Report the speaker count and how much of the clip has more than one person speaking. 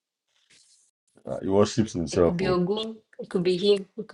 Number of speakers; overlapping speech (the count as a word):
two, about 11%